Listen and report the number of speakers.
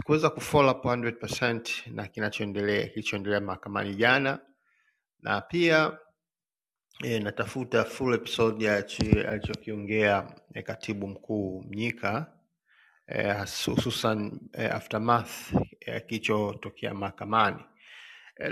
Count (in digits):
1